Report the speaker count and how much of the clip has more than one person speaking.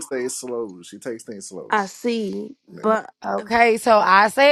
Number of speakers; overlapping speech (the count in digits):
3, about 8%